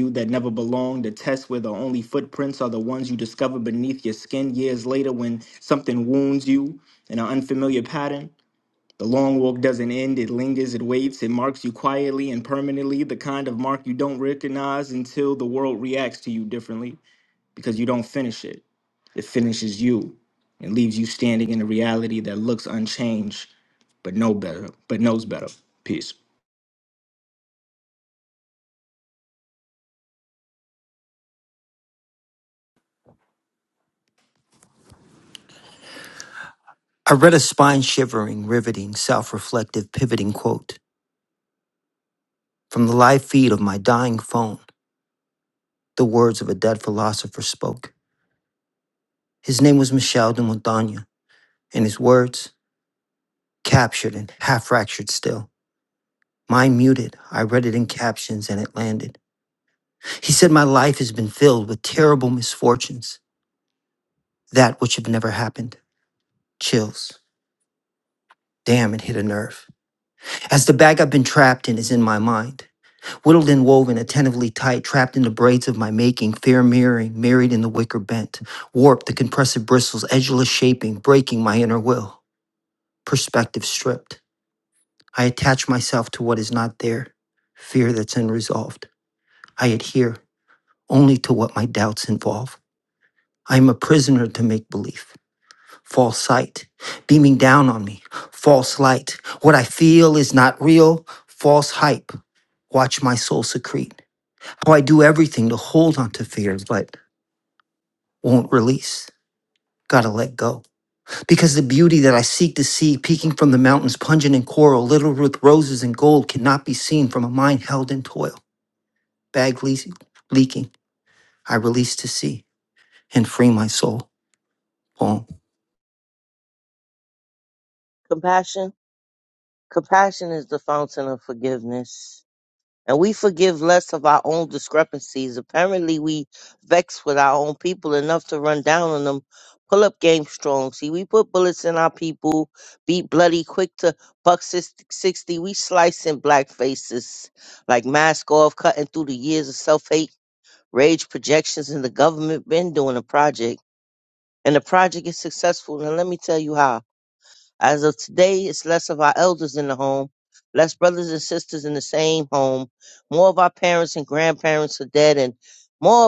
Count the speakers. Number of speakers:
3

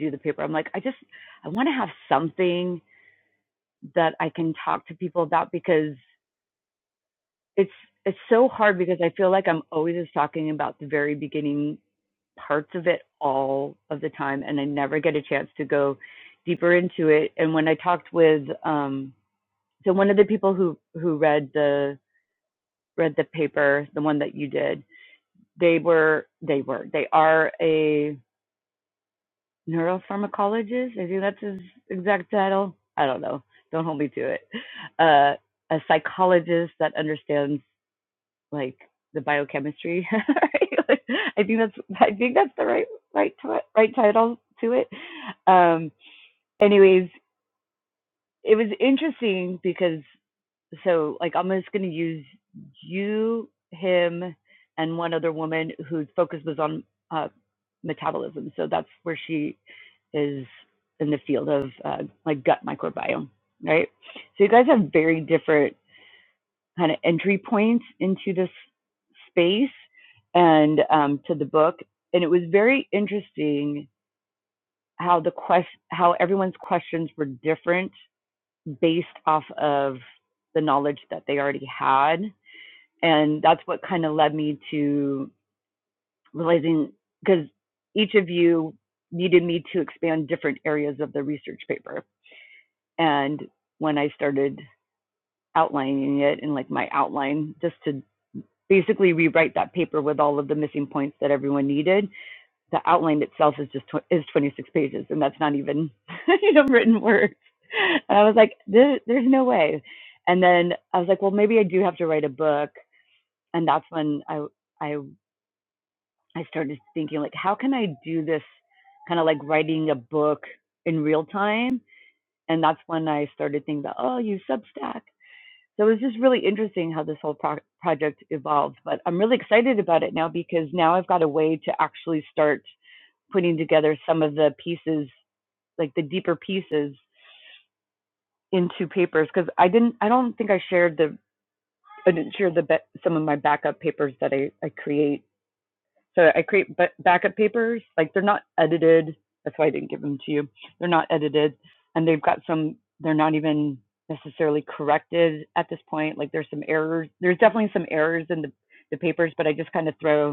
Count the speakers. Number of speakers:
1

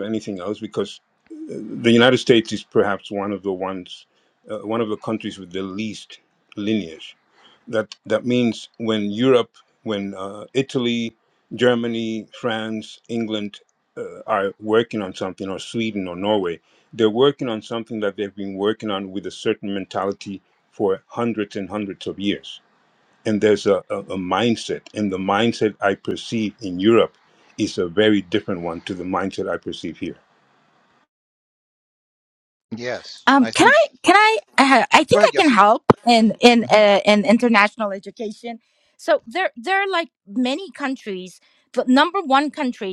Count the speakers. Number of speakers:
3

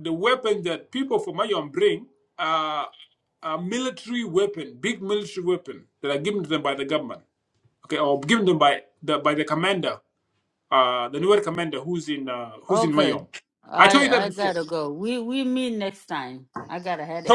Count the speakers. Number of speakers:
2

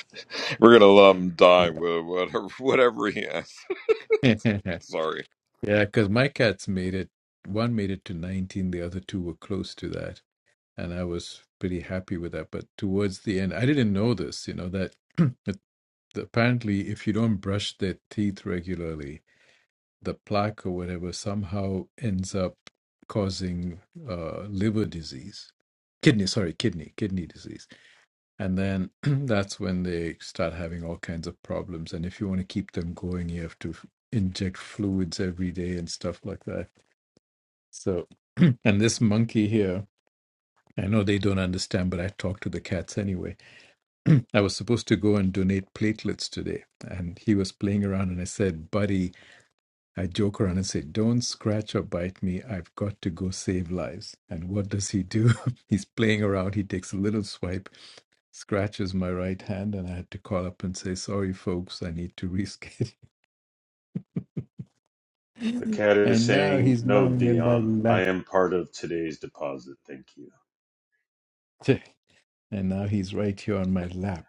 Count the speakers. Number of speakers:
3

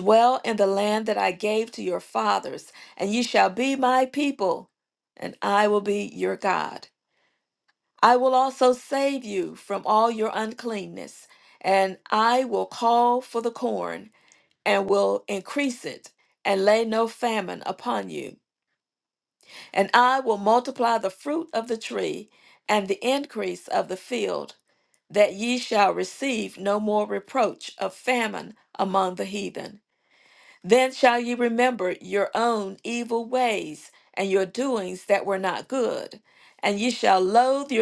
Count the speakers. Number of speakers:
1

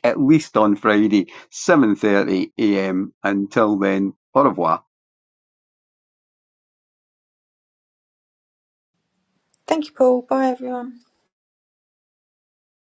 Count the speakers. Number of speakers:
2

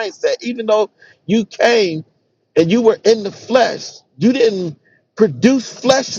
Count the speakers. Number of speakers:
1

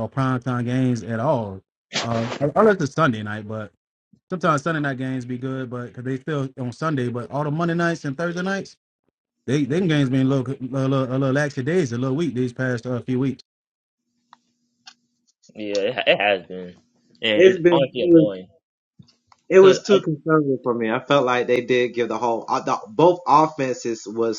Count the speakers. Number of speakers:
3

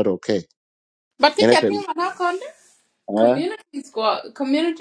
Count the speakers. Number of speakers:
2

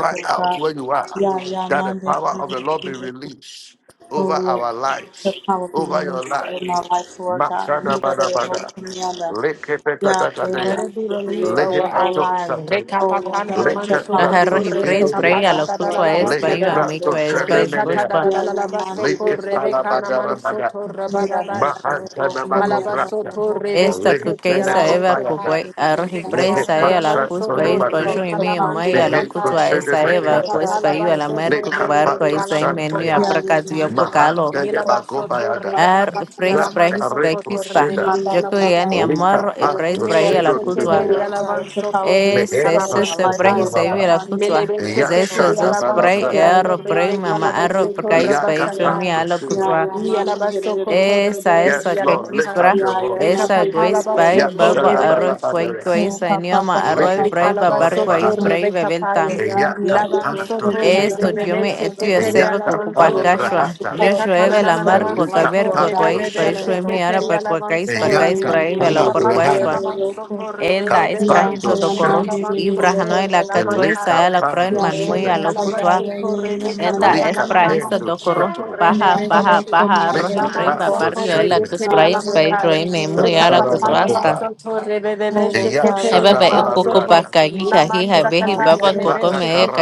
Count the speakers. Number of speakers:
4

